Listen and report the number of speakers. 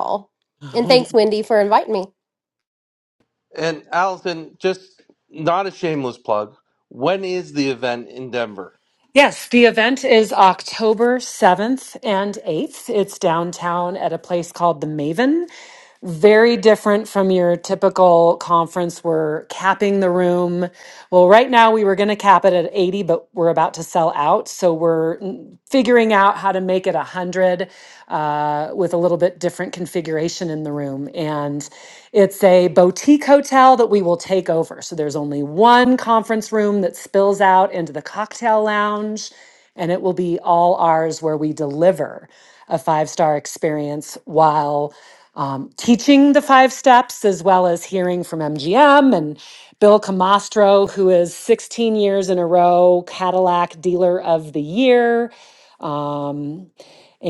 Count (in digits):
3